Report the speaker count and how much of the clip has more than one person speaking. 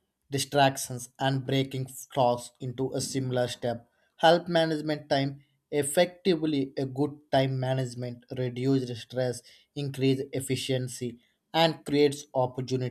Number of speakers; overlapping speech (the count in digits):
1, no overlap